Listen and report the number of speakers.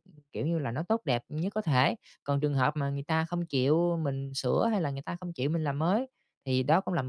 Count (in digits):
1